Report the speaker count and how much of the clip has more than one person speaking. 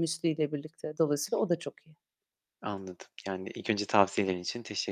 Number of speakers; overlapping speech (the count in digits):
2, no overlap